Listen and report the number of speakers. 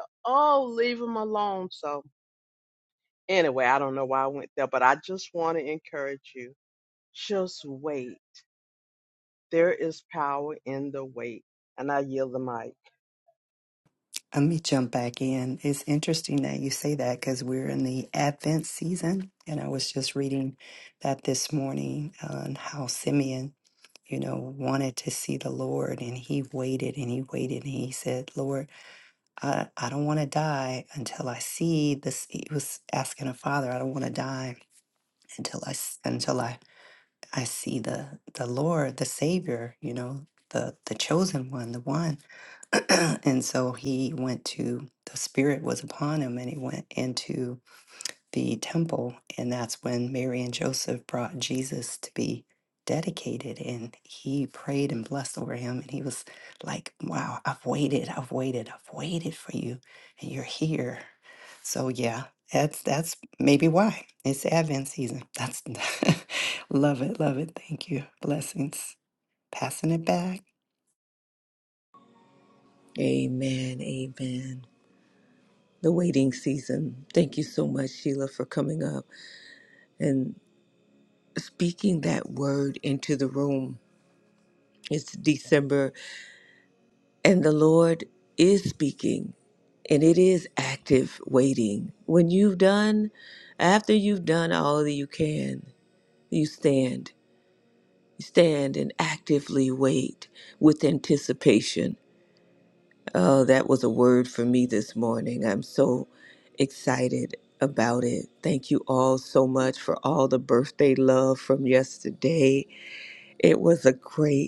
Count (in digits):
3